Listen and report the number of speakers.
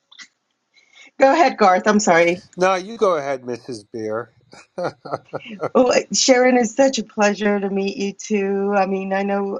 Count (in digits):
2